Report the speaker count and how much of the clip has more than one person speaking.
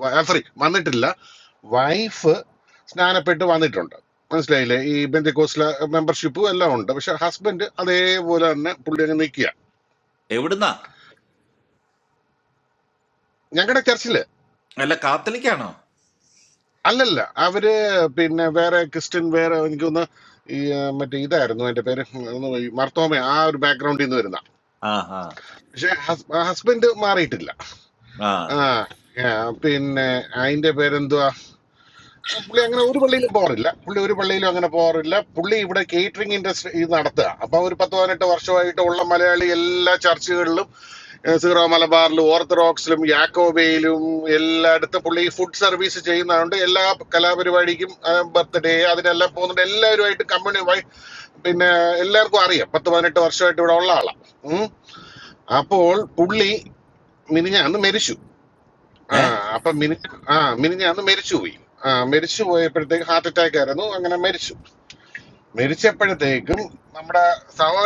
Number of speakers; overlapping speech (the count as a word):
two, under 1%